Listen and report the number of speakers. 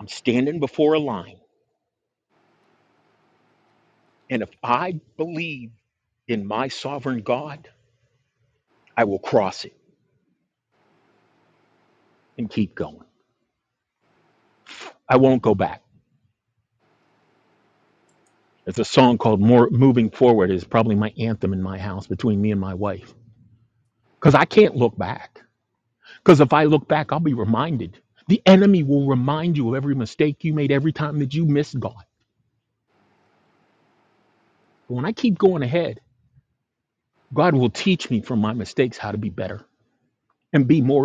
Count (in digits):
1